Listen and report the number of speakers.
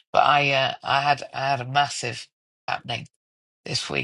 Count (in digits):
1